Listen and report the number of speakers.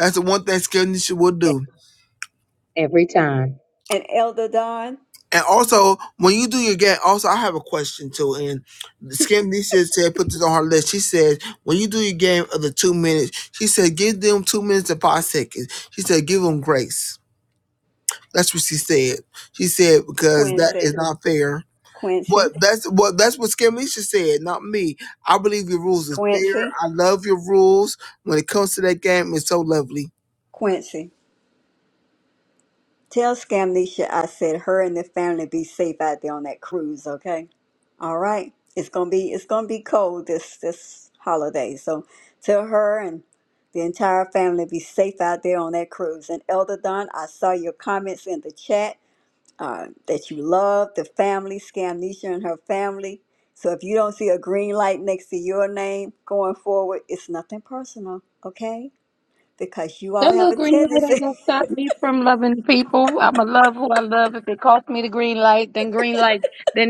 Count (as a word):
three